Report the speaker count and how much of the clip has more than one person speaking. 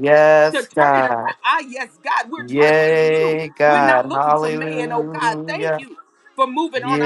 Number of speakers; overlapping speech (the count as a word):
two, about 54%